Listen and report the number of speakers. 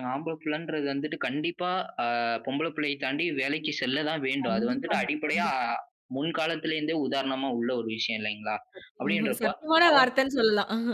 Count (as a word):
two